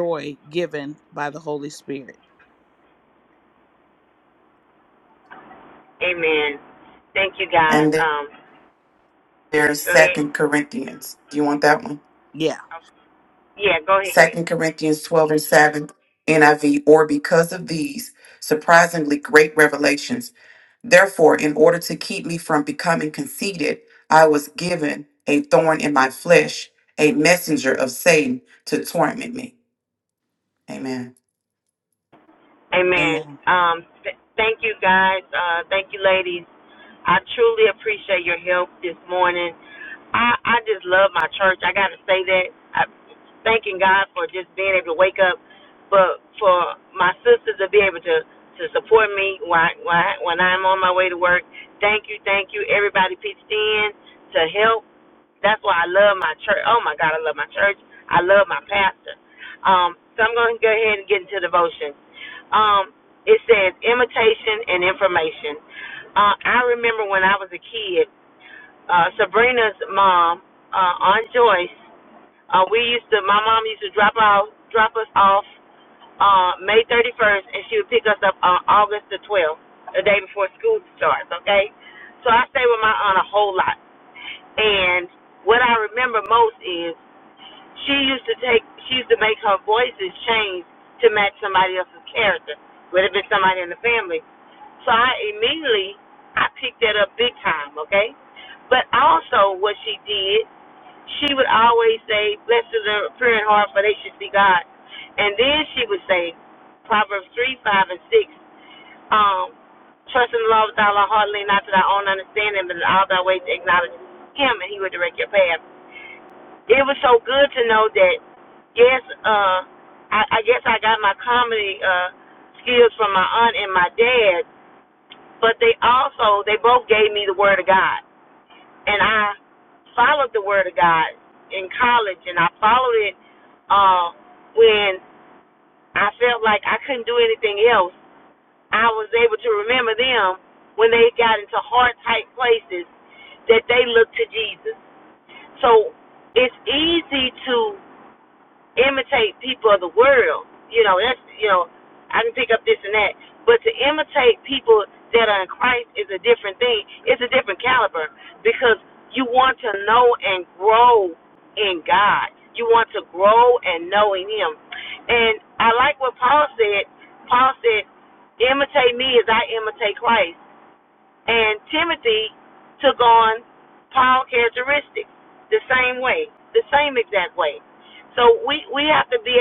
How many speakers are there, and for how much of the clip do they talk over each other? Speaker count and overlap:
three, about 1%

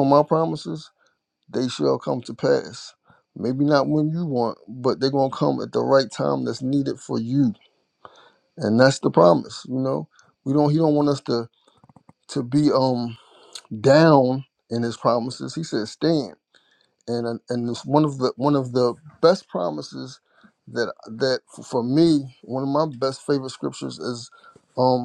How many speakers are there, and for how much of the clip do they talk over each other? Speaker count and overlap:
one, no overlap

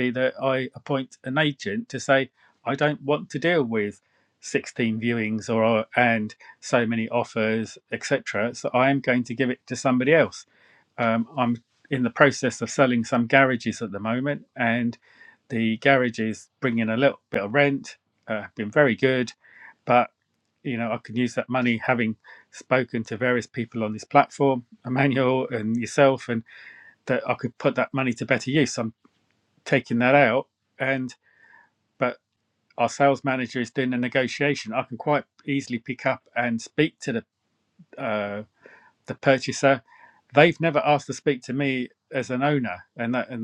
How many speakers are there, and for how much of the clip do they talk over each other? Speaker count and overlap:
one, no overlap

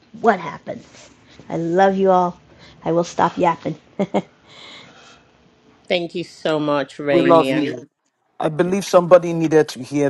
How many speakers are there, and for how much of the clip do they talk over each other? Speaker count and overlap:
three, about 7%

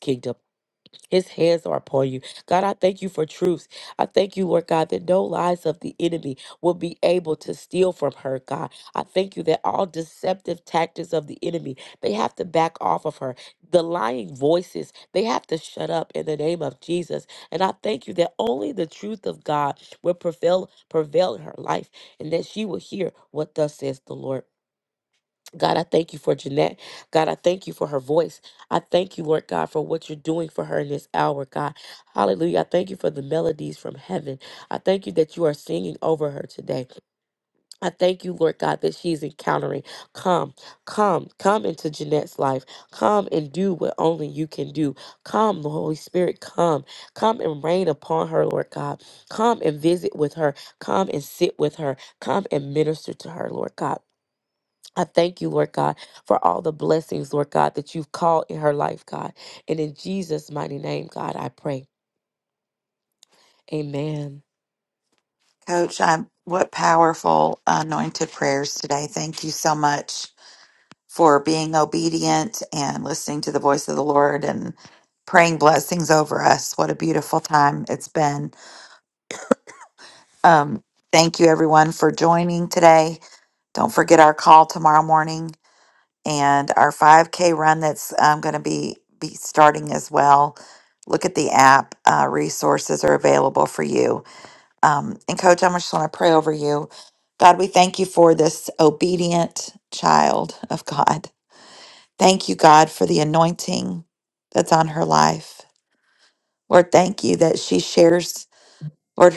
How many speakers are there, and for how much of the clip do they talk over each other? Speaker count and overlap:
two, no overlap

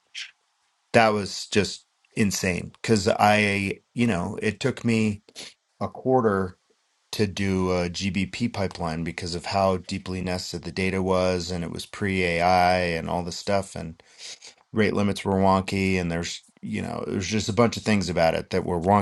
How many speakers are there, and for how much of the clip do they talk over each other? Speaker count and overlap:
one, no overlap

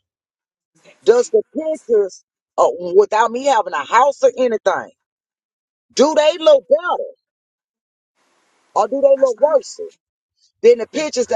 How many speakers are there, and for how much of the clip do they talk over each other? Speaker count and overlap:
one, no overlap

